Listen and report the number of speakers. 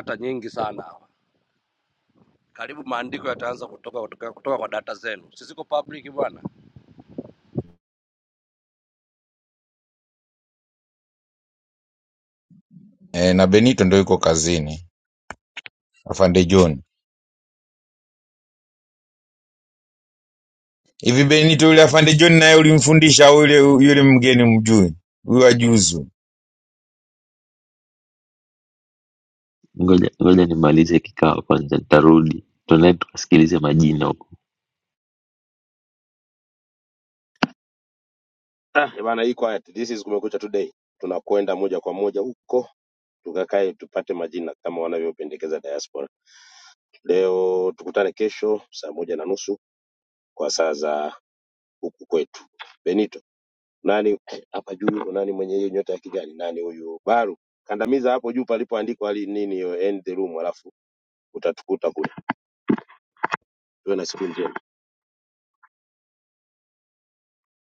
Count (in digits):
4